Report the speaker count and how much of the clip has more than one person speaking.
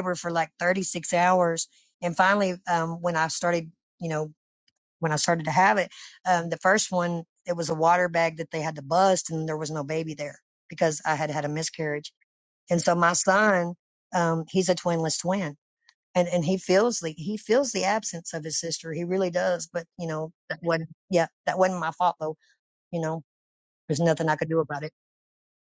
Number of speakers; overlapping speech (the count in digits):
1, no overlap